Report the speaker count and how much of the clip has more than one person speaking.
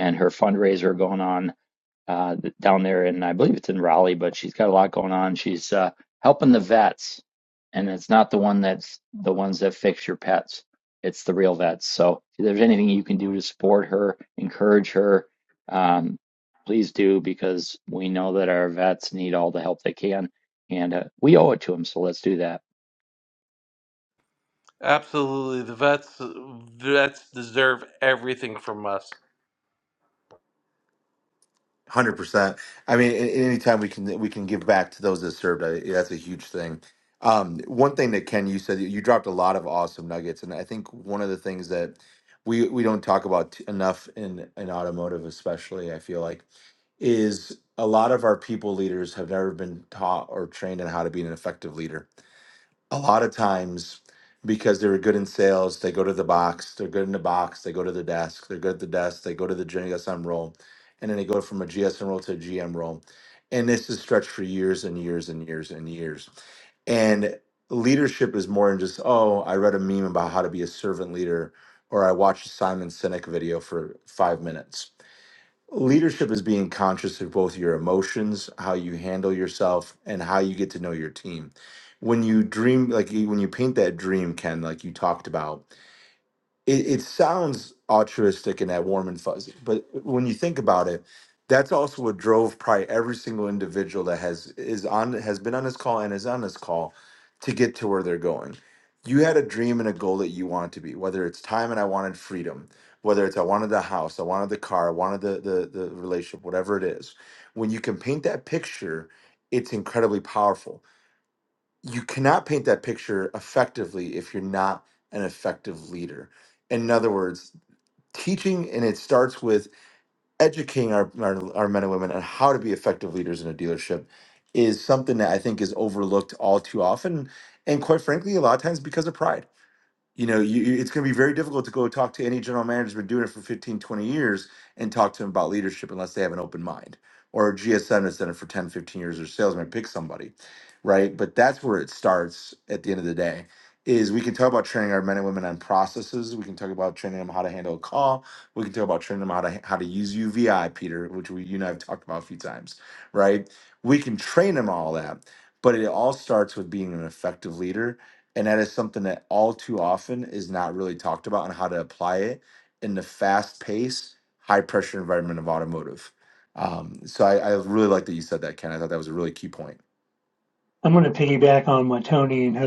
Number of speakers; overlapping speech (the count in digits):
4, no overlap